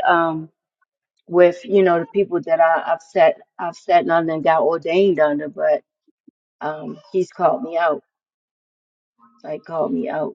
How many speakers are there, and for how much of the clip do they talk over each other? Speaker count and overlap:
1, no overlap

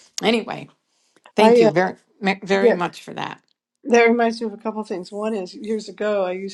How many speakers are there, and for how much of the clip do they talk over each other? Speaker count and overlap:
2, about 9%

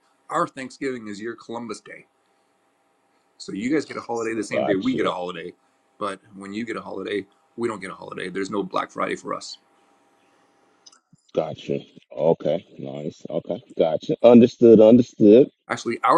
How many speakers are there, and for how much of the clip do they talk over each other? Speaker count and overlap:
2, about 4%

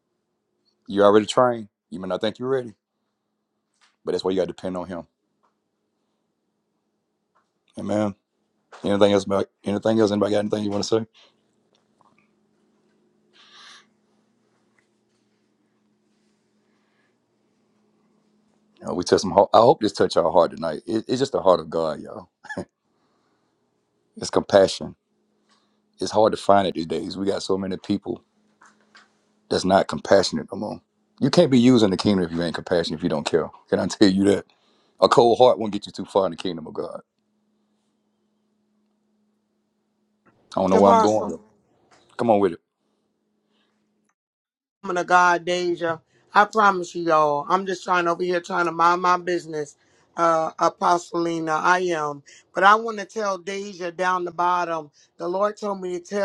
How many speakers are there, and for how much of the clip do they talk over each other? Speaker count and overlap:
2, about 1%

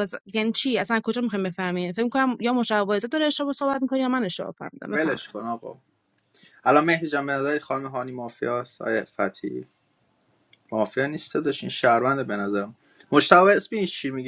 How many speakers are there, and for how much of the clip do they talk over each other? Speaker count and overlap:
2, about 2%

